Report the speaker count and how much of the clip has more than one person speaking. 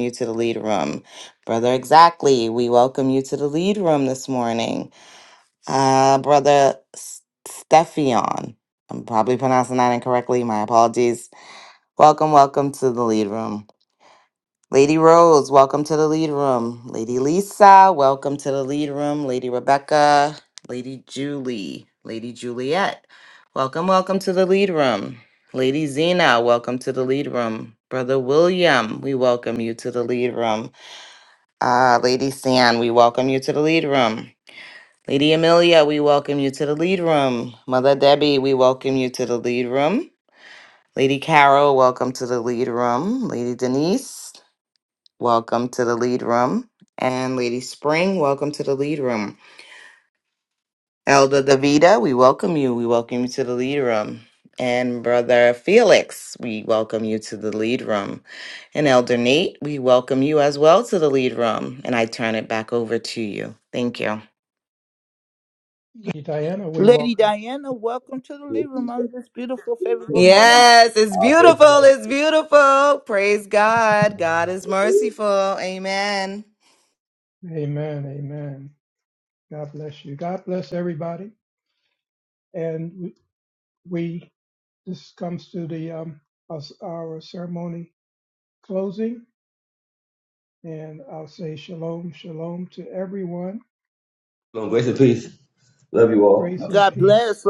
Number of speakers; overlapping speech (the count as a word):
four, about 3%